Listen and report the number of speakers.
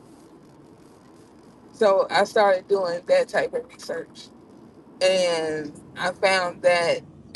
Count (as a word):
one